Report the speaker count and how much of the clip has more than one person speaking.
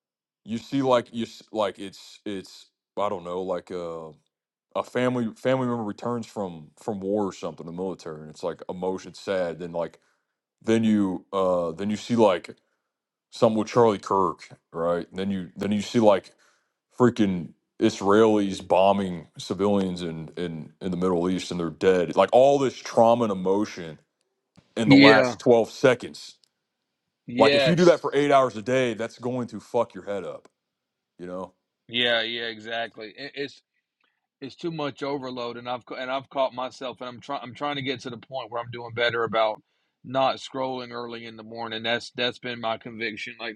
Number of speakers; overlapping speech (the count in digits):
2, about 2%